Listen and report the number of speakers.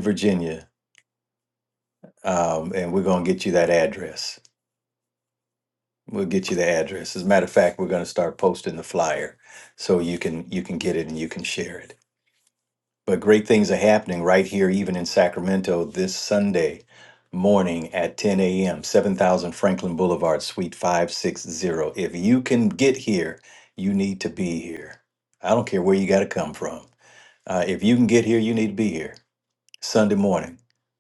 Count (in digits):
1